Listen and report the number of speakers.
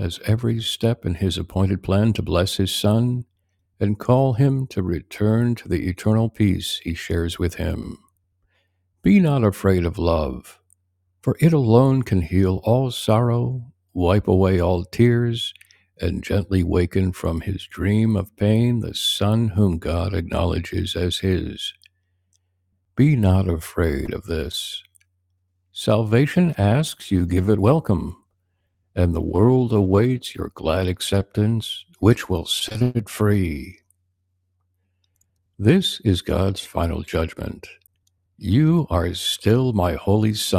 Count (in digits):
1